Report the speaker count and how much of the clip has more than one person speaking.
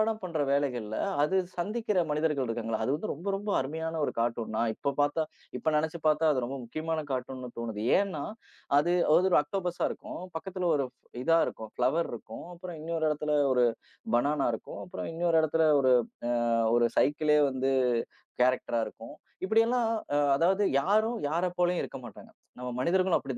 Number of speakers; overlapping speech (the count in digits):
1, no overlap